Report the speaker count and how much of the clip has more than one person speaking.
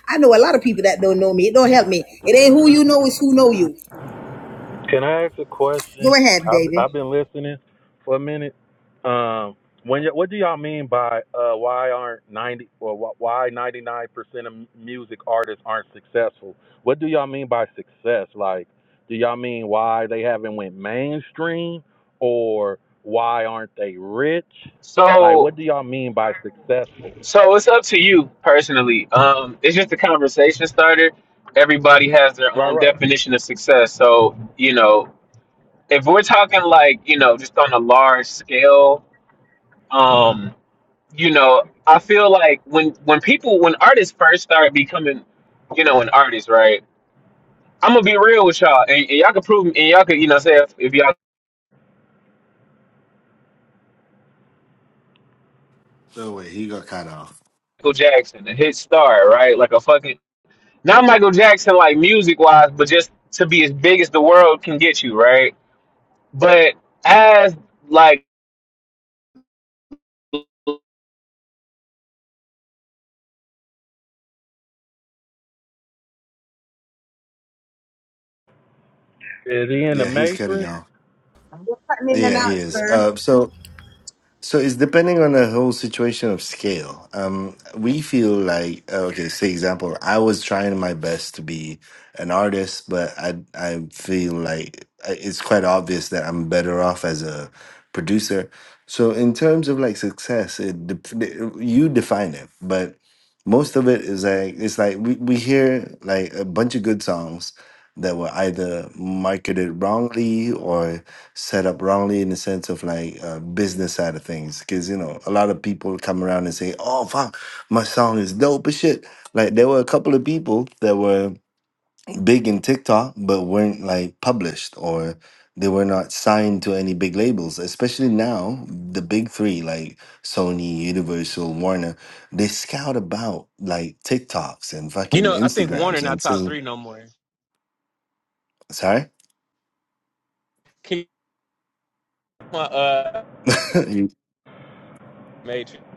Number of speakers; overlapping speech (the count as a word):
four, about 3%